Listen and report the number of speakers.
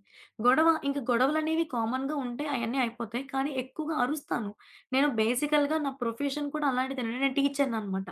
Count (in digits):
1